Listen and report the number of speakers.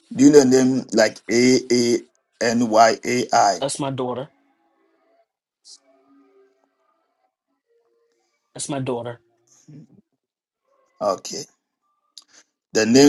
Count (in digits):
2